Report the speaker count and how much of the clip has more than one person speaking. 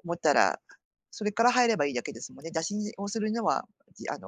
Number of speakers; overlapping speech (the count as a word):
one, no overlap